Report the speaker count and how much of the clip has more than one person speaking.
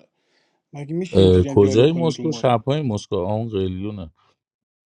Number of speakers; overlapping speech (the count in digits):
2, about 21%